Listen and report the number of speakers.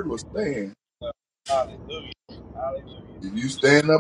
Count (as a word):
two